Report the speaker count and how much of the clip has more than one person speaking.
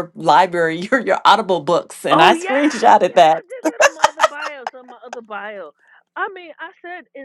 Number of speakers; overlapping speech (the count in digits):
2, about 12%